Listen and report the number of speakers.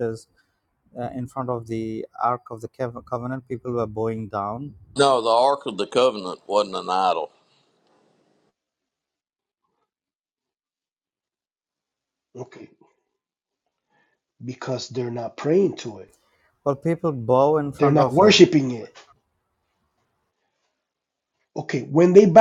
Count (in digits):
3